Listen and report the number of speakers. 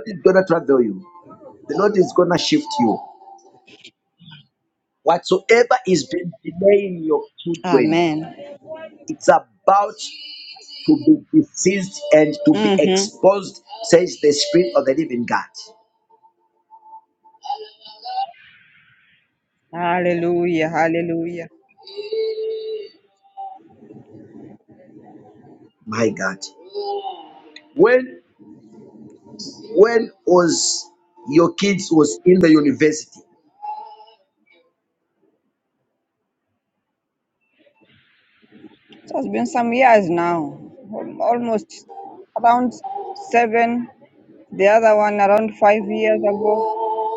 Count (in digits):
2